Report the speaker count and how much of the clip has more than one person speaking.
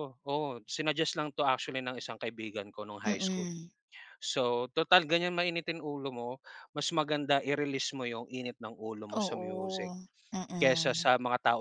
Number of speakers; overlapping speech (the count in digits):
2, about 13%